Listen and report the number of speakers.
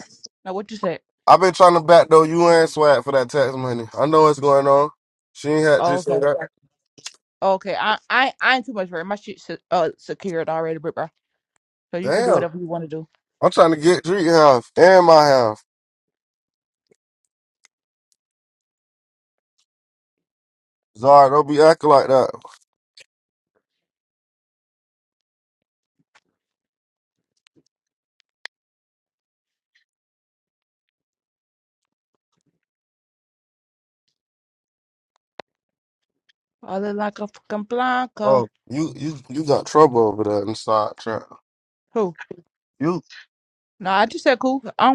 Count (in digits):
2